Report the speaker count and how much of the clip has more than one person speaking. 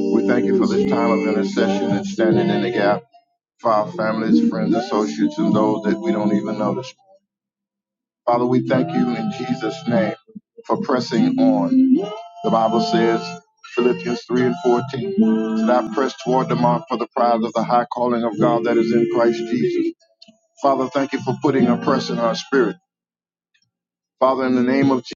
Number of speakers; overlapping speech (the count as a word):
one, no overlap